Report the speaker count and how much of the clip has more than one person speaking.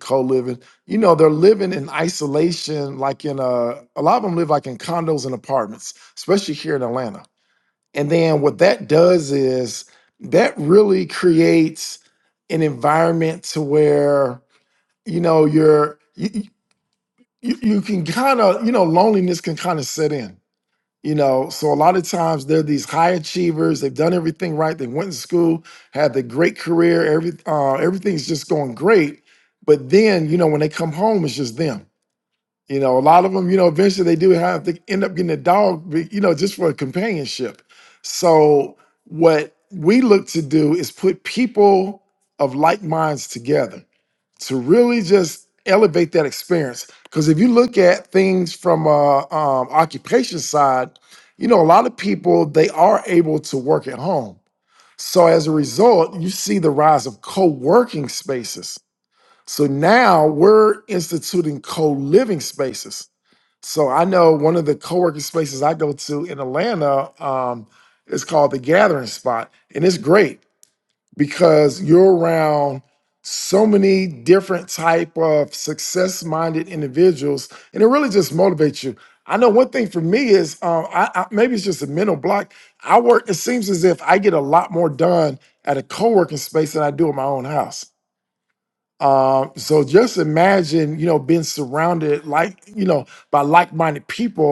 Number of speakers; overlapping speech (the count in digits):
1, no overlap